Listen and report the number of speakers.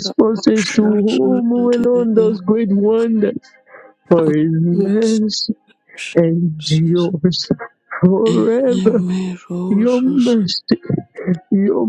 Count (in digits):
2